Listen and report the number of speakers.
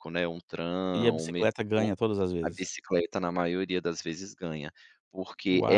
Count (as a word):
two